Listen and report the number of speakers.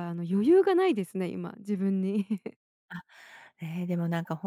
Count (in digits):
2